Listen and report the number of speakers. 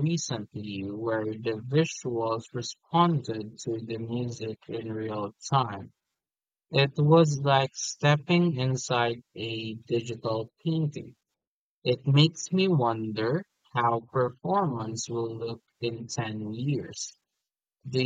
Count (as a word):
one